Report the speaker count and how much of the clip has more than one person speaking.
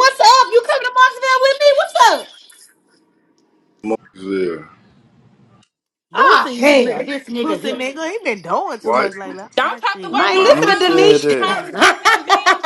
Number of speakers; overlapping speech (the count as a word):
four, about 34%